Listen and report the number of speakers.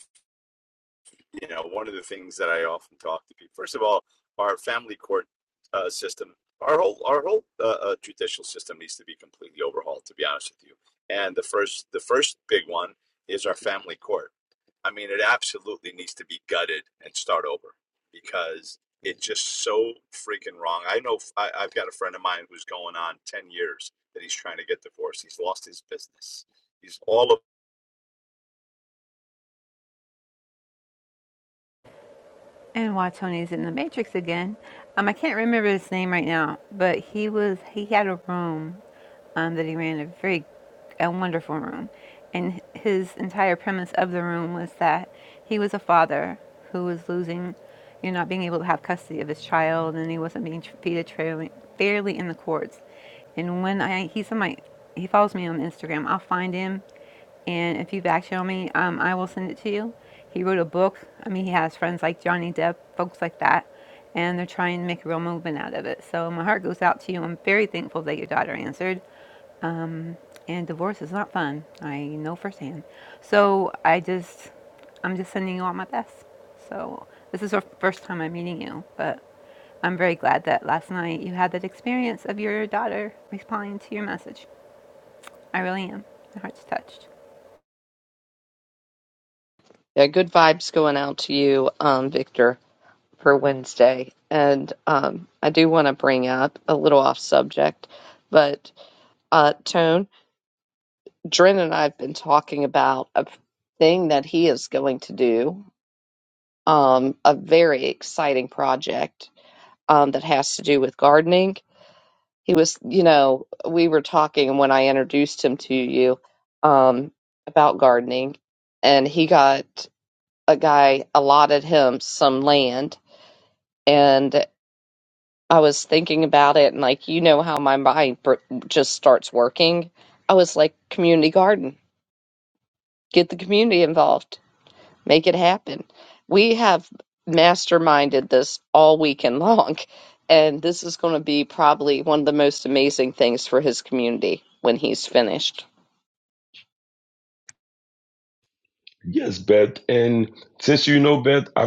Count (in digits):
4